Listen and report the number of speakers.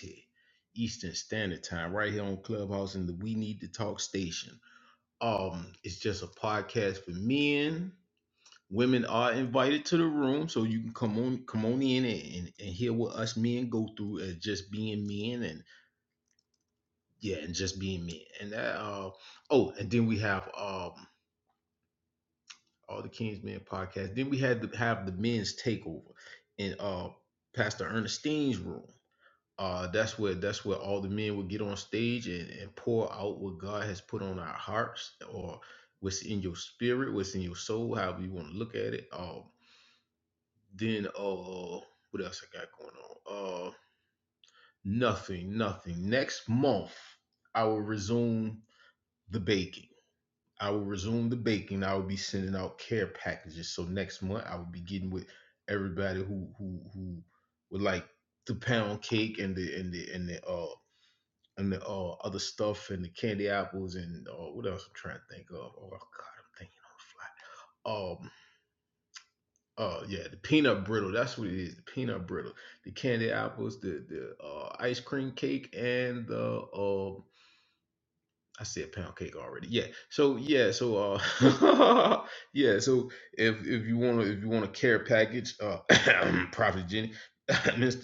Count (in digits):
1